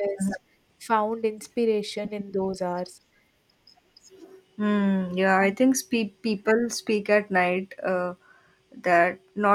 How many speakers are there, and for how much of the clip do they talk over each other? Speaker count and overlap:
2, no overlap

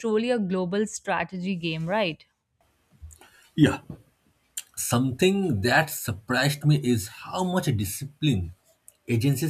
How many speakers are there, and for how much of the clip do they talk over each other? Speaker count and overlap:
2, no overlap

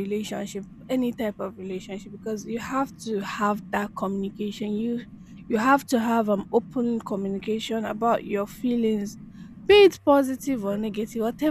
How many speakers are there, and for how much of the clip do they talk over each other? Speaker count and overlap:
1, no overlap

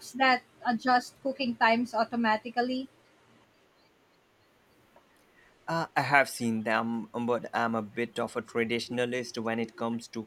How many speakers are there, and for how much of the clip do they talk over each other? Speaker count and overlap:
2, no overlap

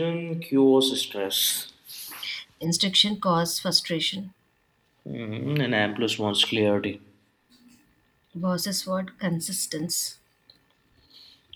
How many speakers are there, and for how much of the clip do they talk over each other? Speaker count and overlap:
2, no overlap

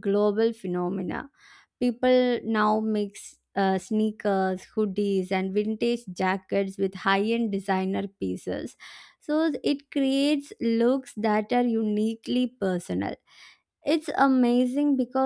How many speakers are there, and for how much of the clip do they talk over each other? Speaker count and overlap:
1, no overlap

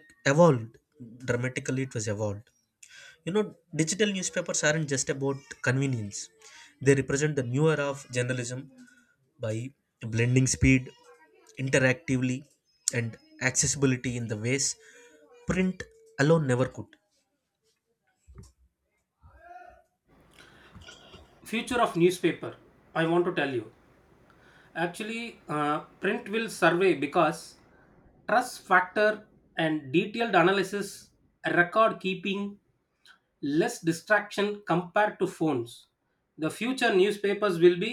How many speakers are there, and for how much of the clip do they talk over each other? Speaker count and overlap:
2, no overlap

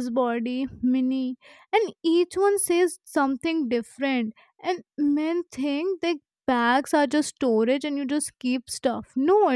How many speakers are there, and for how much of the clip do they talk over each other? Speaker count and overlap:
1, no overlap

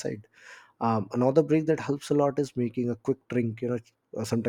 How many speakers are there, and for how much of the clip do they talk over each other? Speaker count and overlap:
1, no overlap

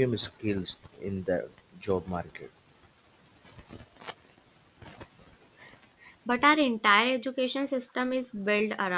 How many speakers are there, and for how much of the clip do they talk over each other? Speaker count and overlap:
2, no overlap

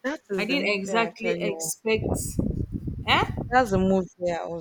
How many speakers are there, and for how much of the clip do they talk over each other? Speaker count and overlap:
2, about 29%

